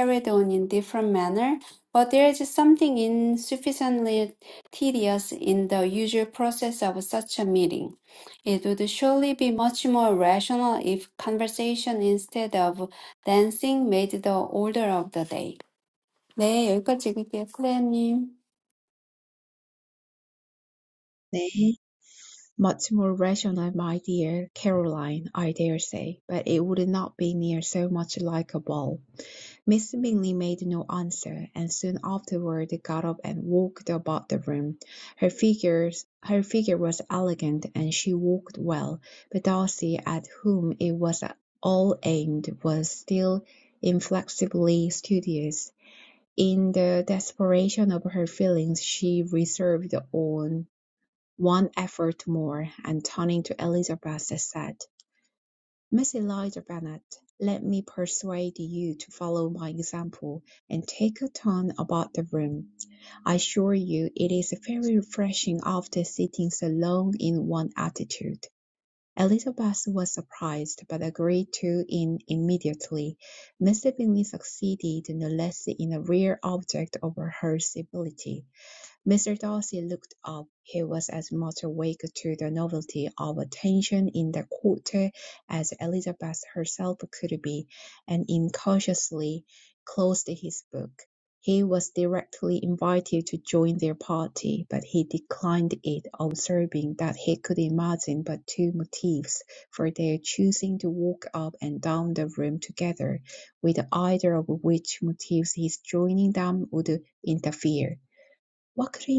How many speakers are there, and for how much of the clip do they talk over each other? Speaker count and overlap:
two, no overlap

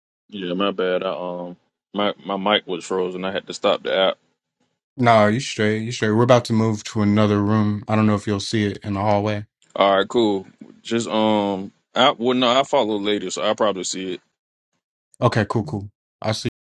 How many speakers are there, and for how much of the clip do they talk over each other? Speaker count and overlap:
two, no overlap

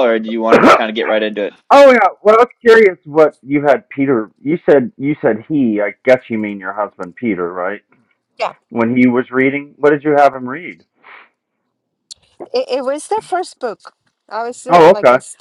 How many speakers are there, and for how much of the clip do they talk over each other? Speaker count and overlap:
three, about 3%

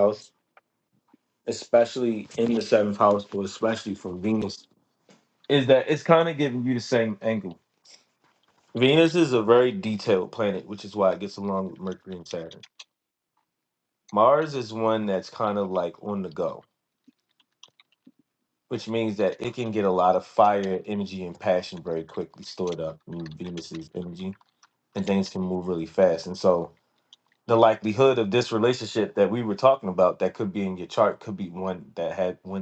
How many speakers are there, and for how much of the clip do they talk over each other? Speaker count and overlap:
one, no overlap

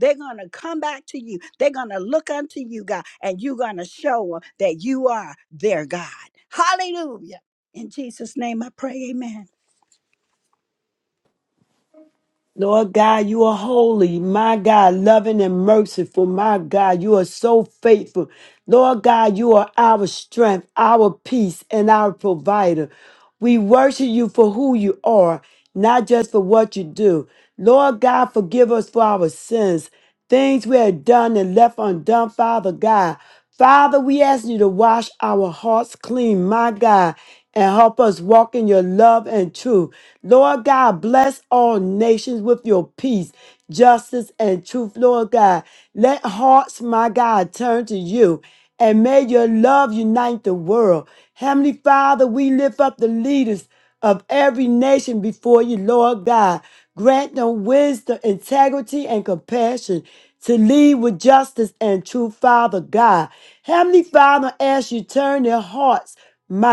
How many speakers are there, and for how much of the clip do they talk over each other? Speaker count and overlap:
two, no overlap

